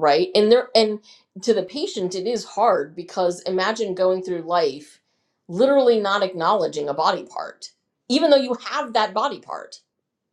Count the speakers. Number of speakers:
one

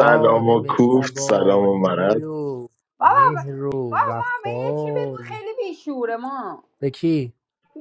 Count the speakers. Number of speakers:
three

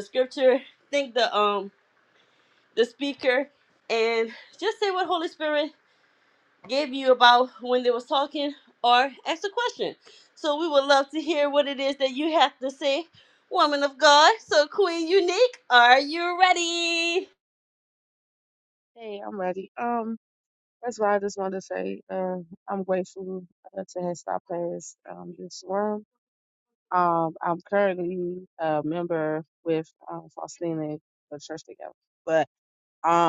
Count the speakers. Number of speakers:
two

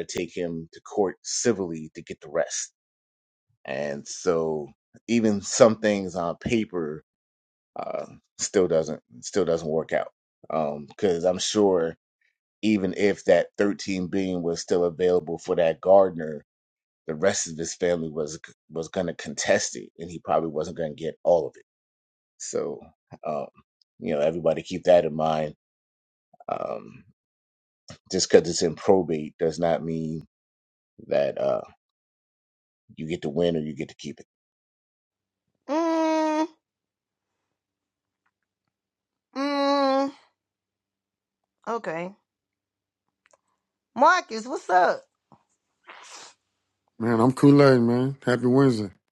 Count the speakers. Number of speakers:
three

